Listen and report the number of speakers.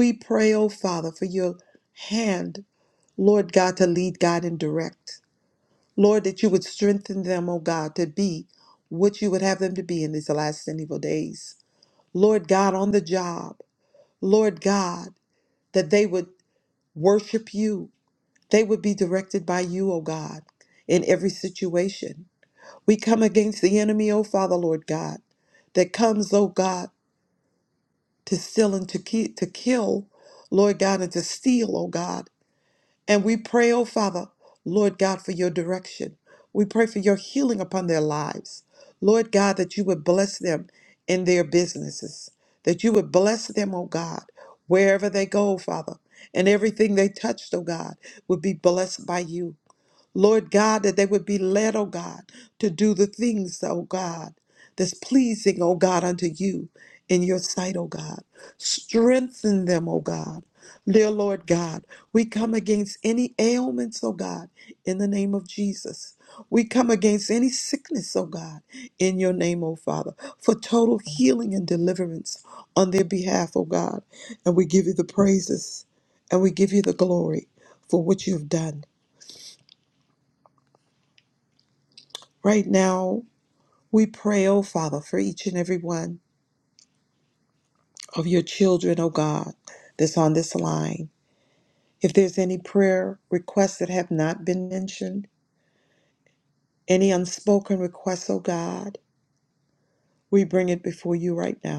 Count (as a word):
one